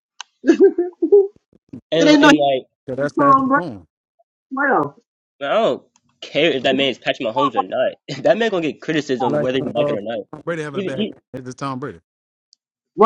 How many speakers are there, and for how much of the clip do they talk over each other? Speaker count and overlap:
3, about 15%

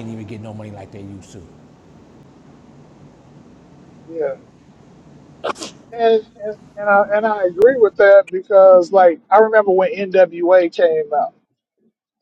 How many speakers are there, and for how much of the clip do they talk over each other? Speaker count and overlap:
2, no overlap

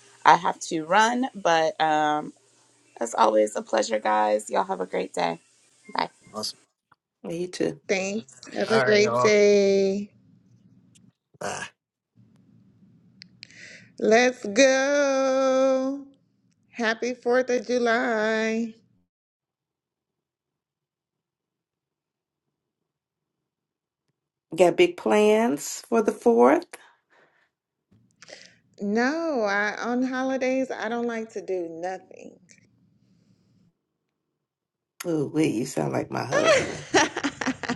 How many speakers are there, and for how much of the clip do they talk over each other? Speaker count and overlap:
4, about 2%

